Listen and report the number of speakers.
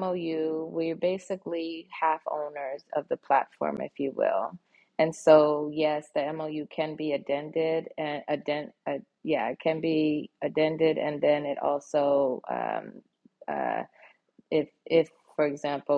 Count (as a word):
one